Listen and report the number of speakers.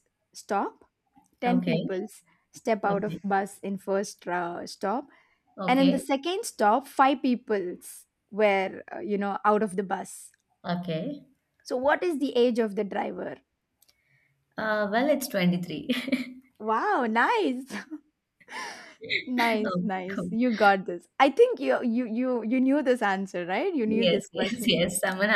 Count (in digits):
2